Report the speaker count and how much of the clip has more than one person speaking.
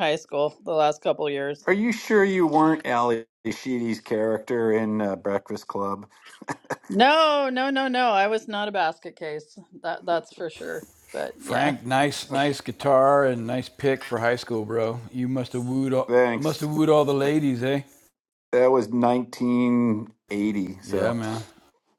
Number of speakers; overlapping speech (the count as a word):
three, about 5%